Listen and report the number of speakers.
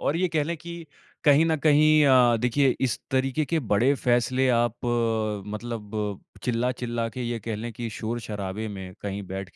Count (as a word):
one